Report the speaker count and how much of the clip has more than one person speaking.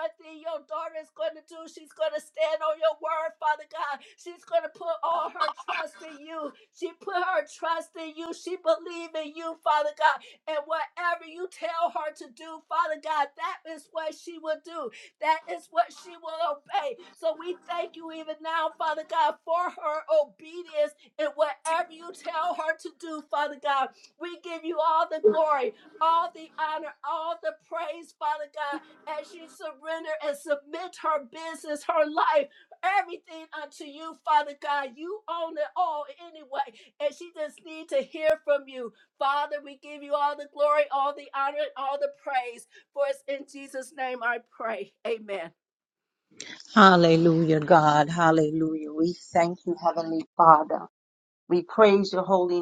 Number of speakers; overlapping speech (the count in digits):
2, no overlap